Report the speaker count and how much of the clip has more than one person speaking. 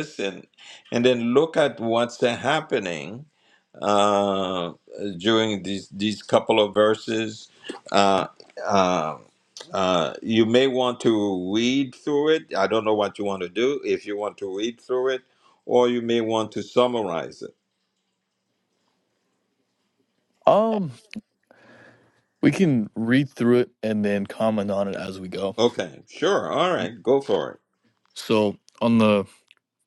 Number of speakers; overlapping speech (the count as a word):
two, no overlap